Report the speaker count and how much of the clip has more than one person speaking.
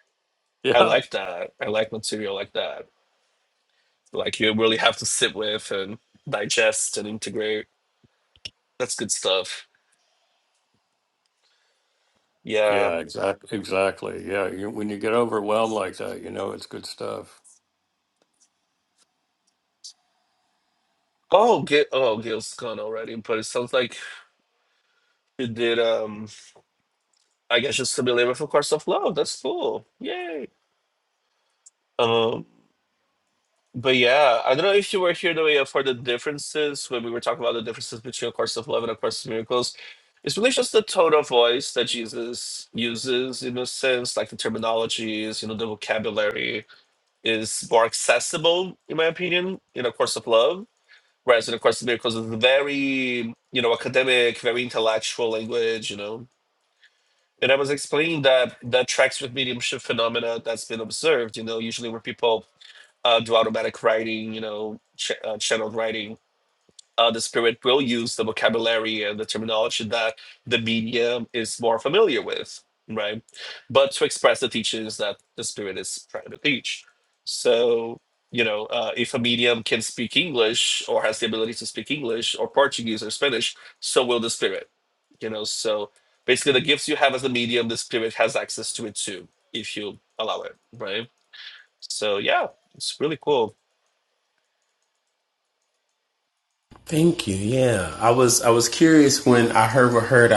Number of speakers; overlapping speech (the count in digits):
3, about 1%